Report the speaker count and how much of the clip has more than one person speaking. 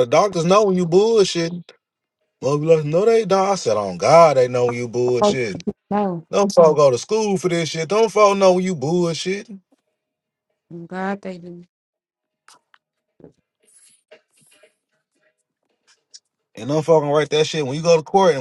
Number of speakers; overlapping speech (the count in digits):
2, no overlap